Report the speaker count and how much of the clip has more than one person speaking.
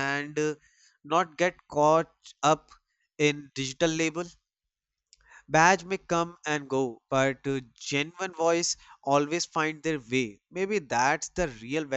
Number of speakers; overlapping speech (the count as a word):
one, no overlap